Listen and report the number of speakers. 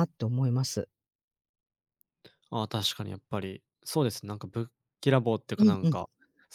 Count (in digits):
2